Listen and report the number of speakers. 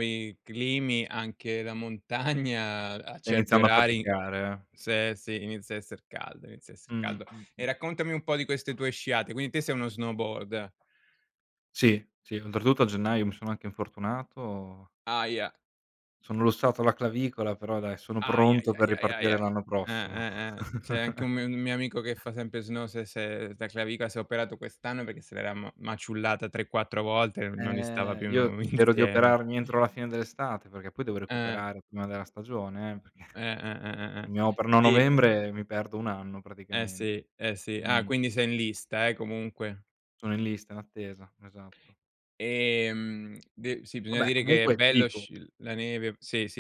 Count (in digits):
2